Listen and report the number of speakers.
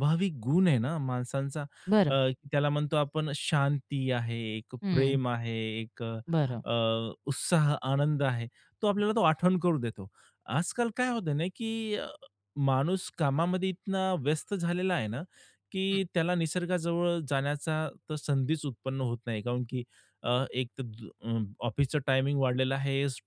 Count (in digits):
2